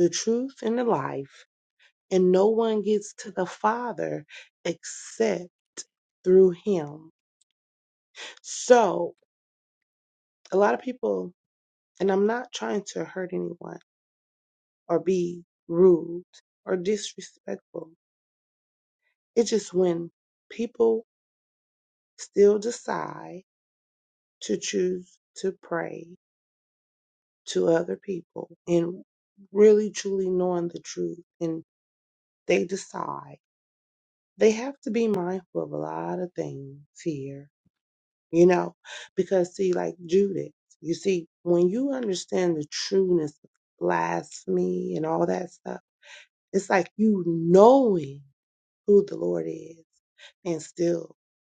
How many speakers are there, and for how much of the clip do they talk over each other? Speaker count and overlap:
1, no overlap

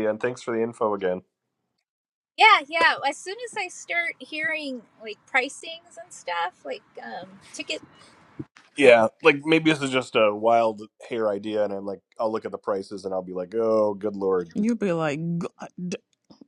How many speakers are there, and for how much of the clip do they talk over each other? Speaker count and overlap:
3, about 1%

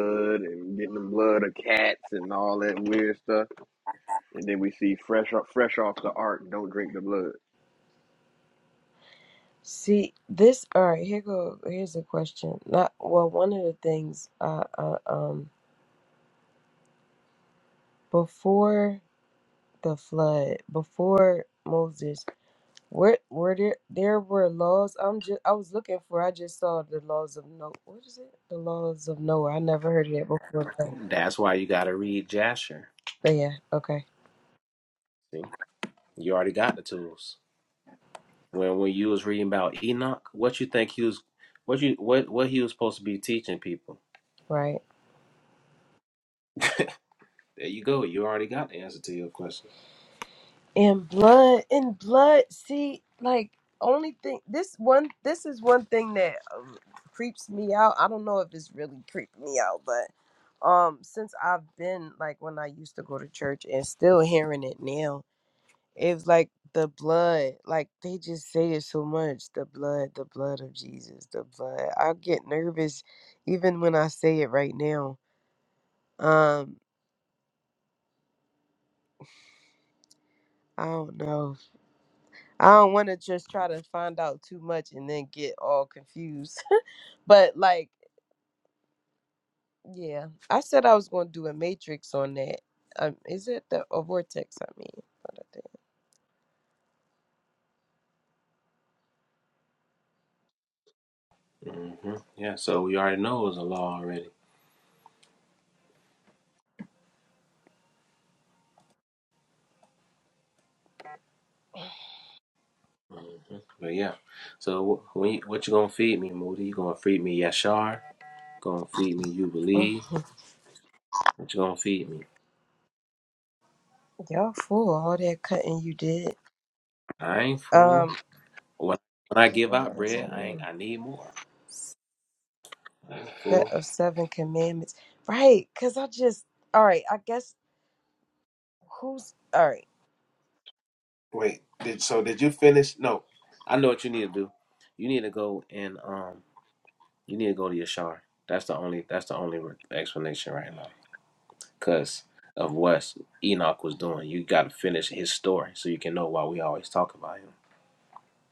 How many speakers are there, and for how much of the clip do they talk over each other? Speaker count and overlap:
3, about 1%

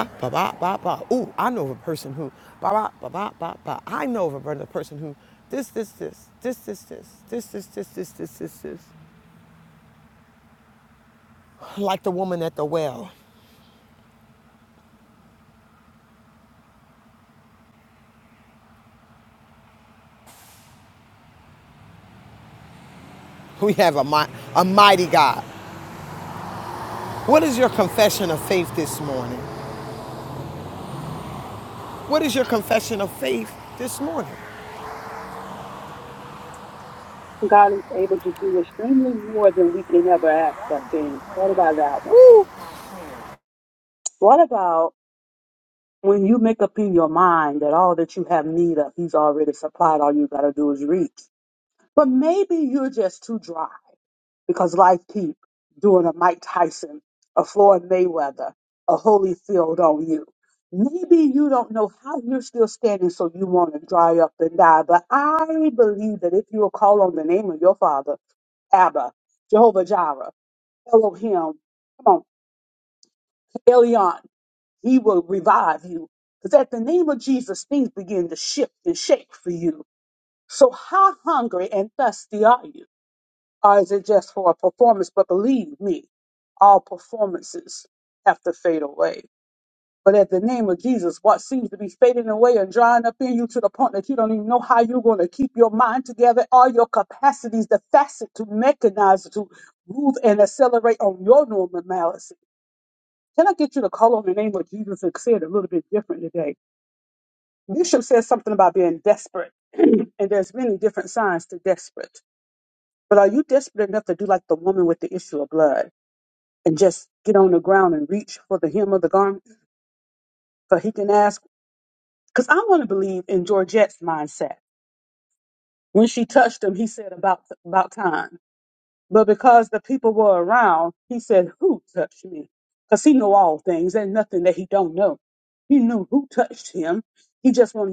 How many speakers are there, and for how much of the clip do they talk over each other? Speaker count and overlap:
2, under 1%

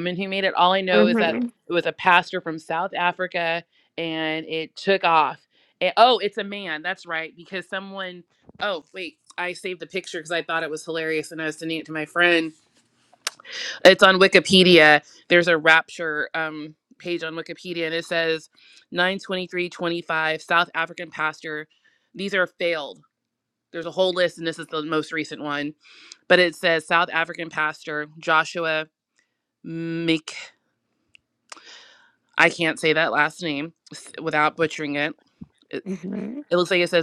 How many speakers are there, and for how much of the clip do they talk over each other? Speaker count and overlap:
2, about 2%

